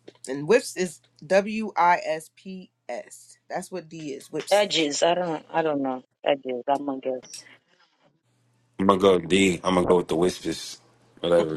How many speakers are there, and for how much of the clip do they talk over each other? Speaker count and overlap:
three, no overlap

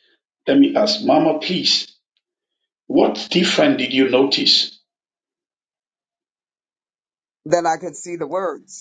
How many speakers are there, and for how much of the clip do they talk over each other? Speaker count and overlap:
two, no overlap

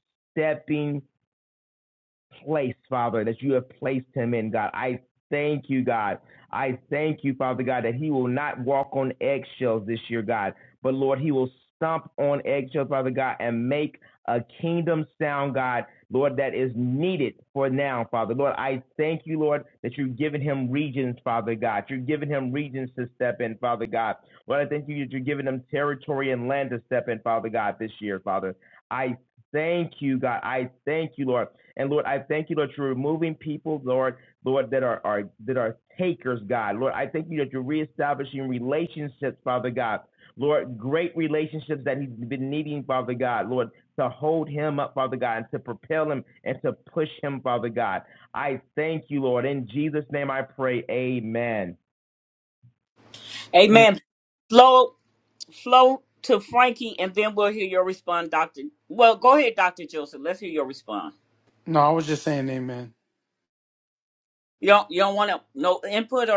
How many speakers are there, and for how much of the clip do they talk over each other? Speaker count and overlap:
three, under 1%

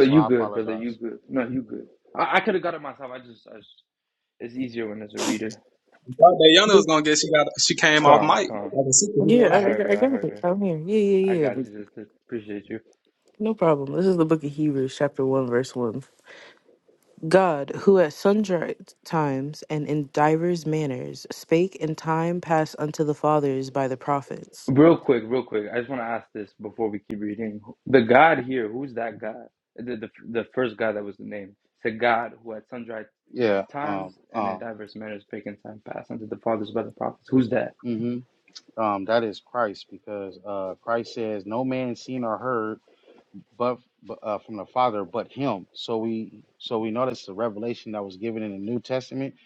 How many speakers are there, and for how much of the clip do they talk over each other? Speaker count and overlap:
four, about 8%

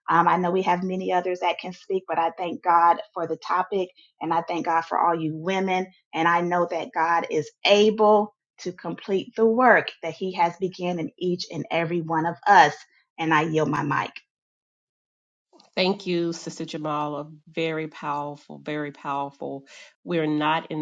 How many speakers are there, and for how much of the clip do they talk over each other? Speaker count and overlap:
two, no overlap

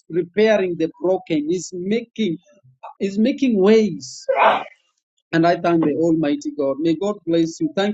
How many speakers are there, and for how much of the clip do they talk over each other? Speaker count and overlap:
one, no overlap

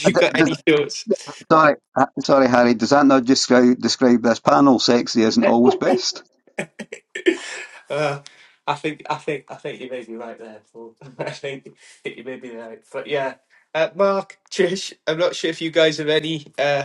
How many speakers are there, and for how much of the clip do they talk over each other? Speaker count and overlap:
two, about 3%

